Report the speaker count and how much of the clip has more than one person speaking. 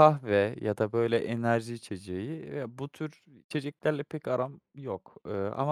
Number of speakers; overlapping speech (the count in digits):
1, no overlap